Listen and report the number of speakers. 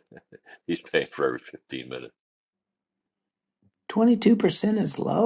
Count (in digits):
2